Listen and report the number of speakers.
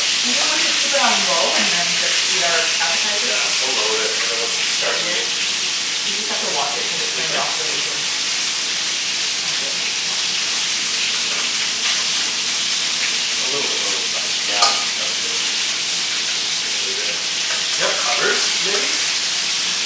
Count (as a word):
two